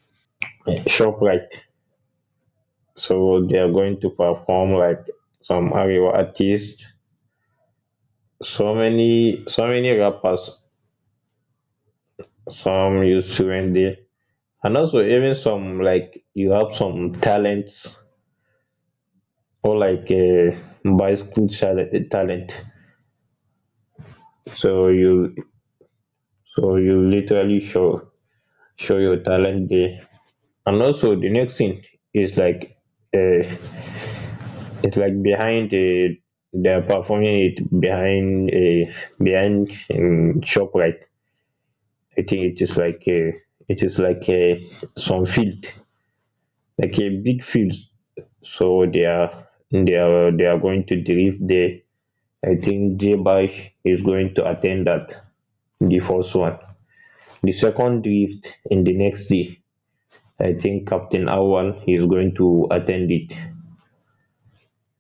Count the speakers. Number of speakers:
1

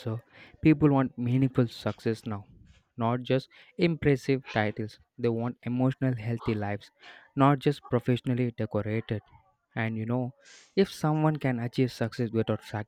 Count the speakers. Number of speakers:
1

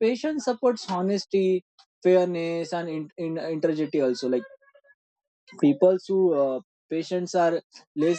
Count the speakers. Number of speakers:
1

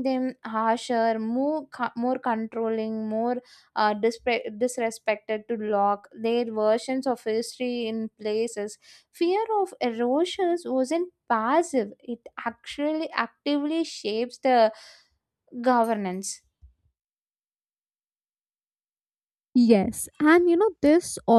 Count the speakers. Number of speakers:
2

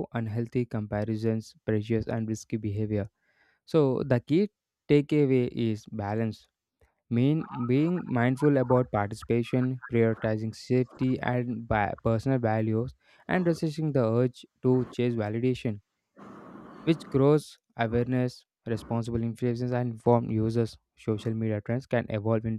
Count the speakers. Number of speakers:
1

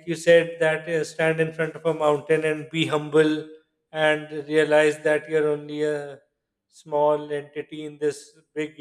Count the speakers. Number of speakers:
1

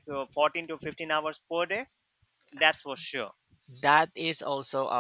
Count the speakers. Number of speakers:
2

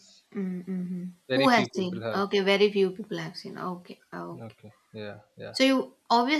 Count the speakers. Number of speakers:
2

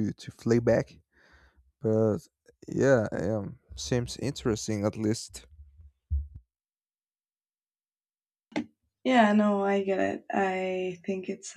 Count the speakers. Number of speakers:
2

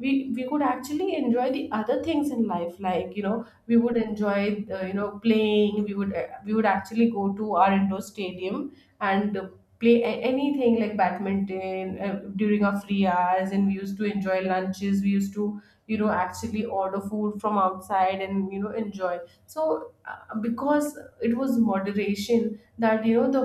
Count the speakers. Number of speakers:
1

